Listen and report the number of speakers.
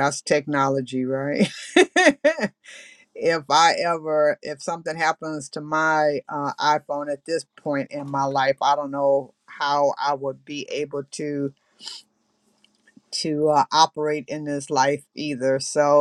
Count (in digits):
1